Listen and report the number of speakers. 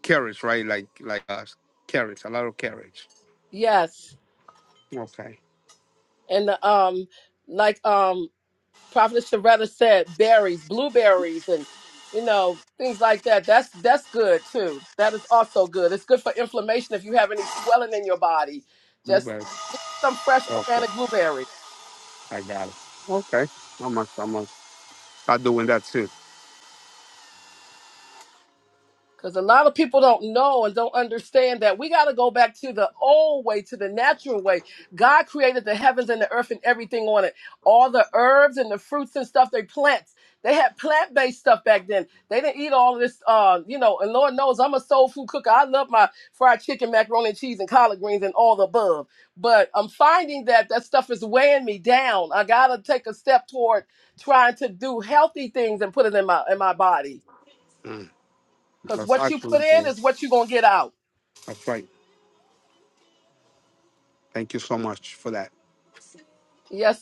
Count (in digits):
2